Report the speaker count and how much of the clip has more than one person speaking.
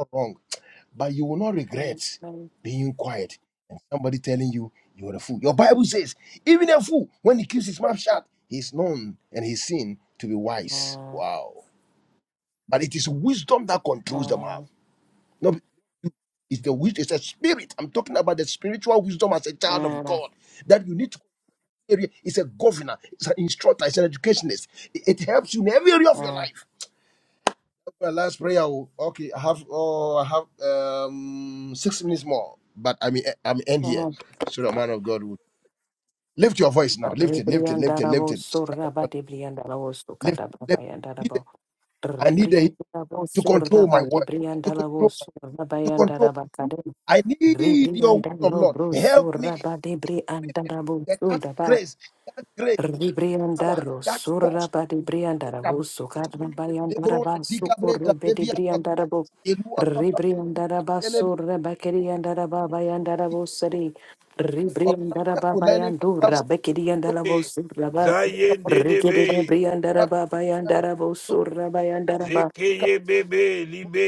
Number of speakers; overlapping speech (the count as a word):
three, about 20%